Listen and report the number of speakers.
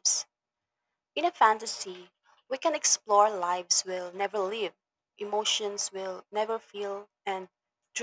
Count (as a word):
one